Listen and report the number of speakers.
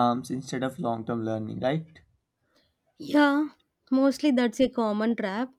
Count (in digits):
2